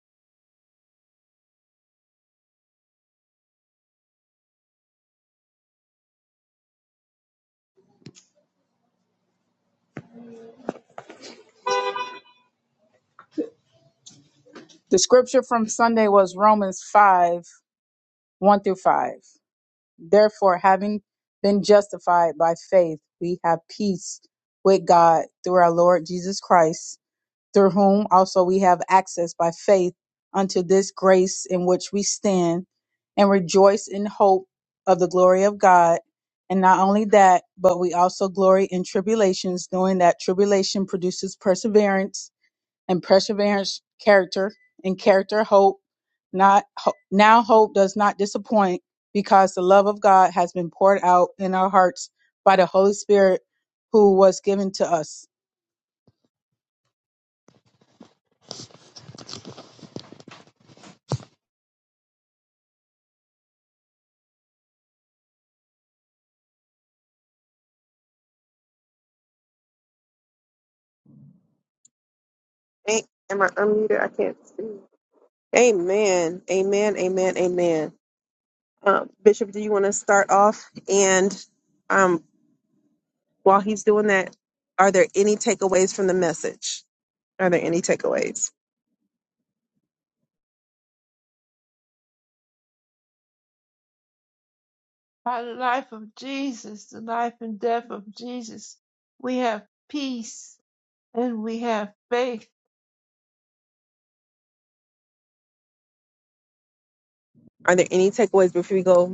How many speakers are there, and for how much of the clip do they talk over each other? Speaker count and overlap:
three, no overlap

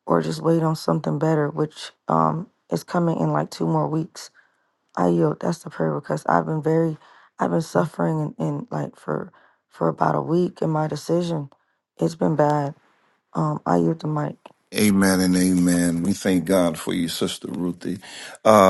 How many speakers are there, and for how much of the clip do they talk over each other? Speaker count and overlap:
two, no overlap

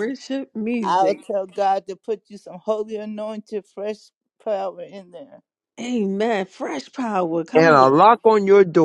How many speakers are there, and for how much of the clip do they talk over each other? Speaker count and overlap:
three, about 8%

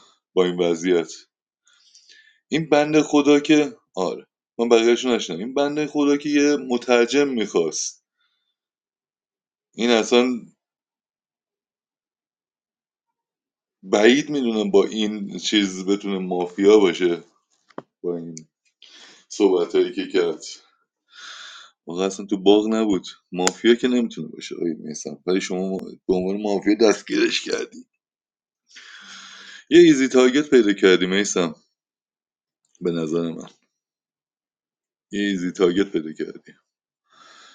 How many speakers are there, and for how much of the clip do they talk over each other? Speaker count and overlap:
one, no overlap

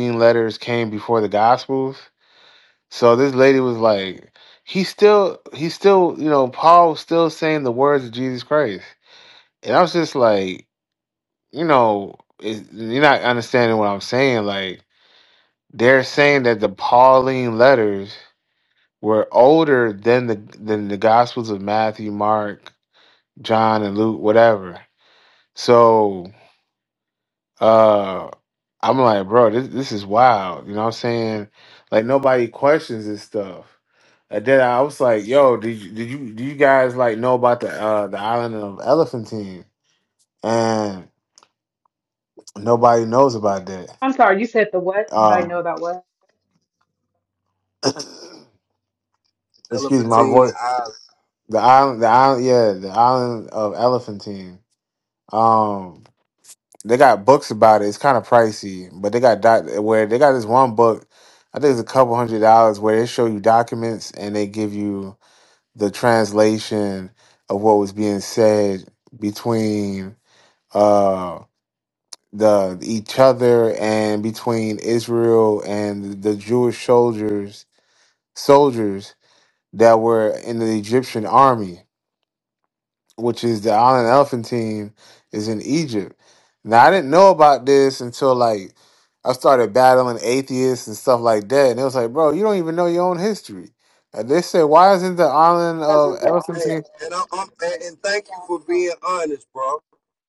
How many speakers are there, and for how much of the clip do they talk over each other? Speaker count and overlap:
three, about 2%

